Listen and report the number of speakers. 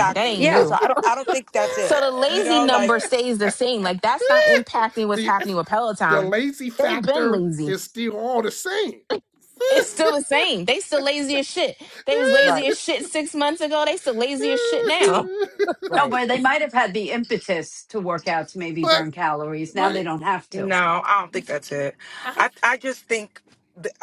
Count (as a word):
four